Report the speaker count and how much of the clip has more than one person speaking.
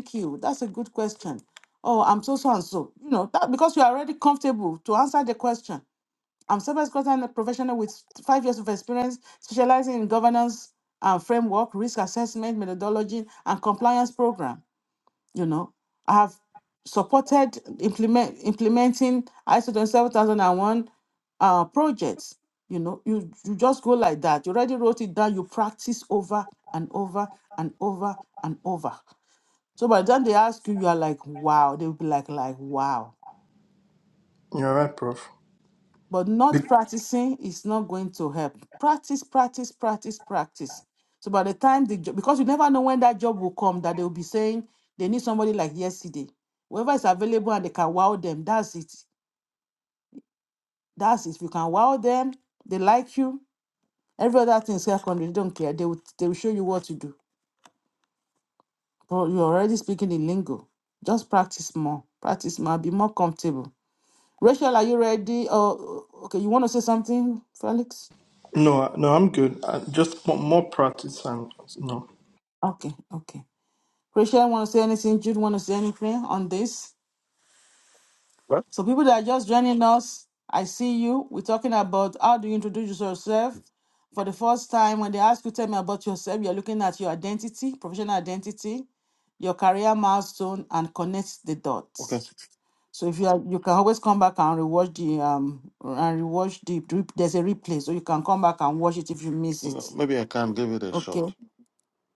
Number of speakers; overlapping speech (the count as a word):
three, about 1%